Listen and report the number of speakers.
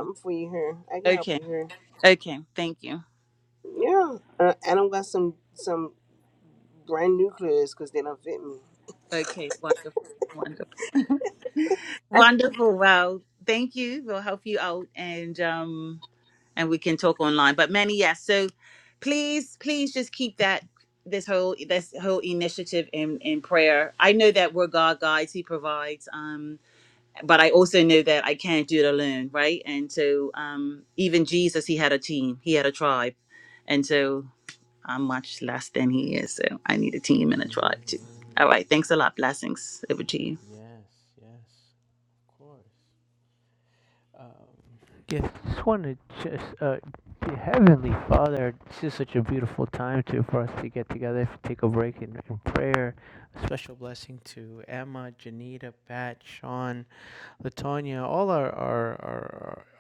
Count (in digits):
3